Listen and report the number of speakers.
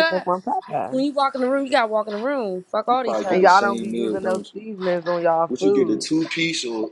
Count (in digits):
3